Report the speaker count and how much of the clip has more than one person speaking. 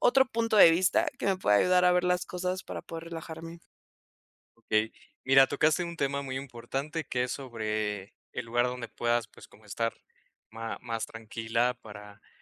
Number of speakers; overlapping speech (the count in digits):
2, no overlap